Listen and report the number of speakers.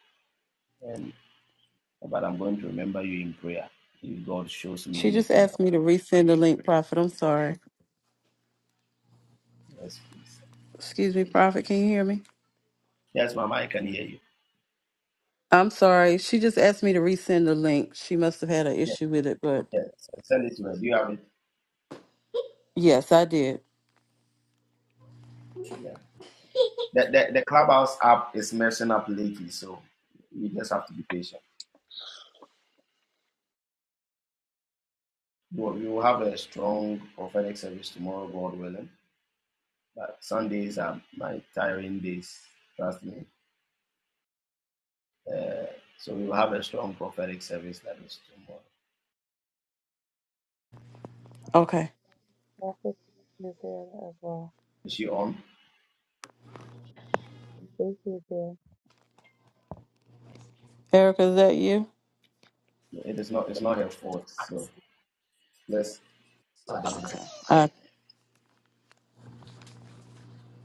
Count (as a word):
three